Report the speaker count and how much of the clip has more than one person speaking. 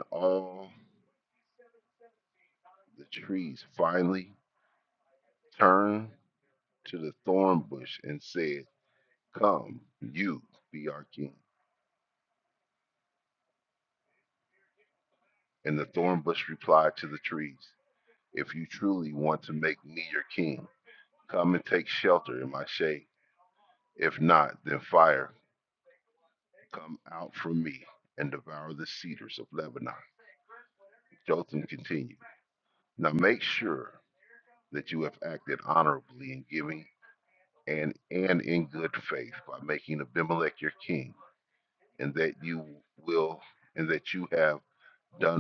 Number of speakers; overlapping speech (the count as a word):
one, no overlap